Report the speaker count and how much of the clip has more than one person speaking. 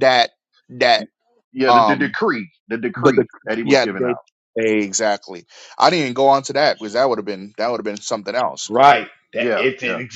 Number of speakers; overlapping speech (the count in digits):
3, about 18%